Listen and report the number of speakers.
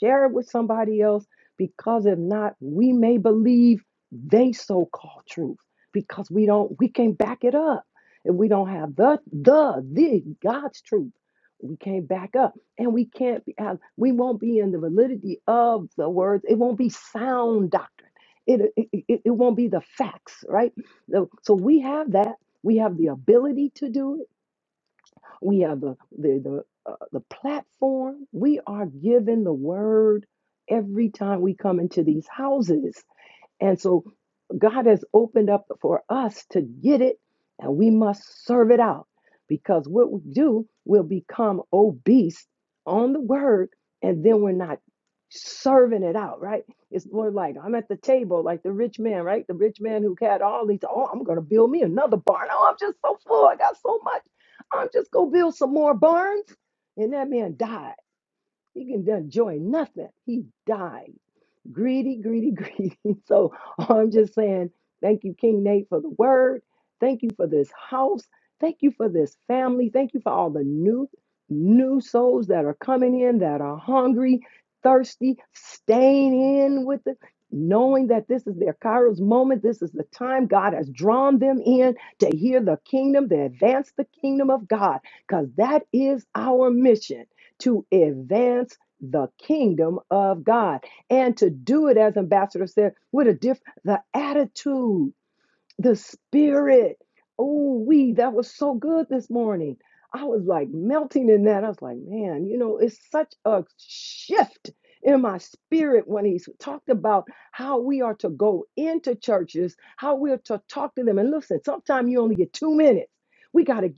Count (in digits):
1